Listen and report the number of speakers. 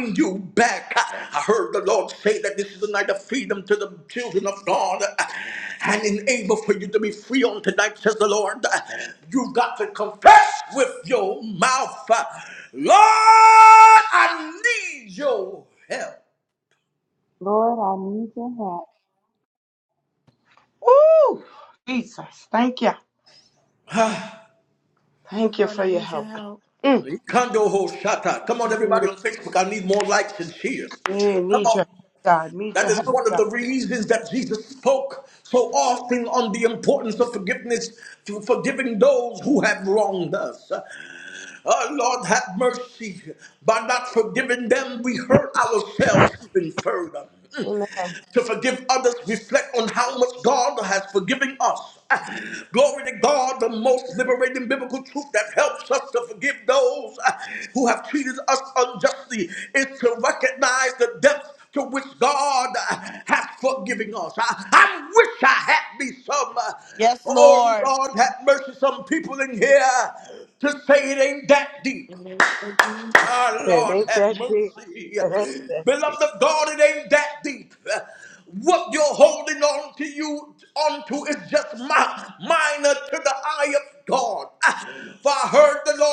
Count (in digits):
4